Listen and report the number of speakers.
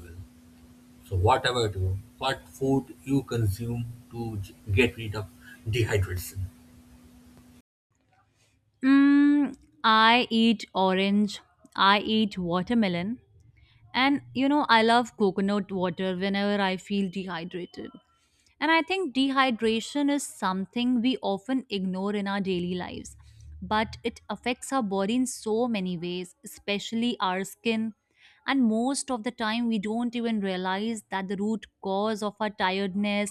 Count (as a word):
two